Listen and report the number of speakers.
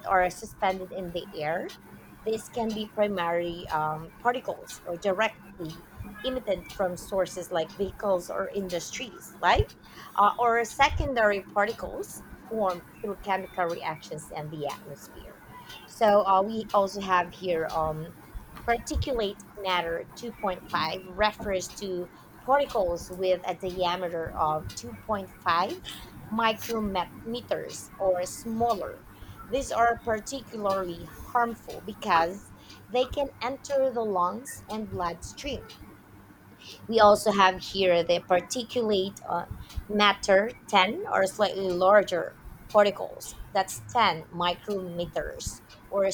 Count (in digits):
1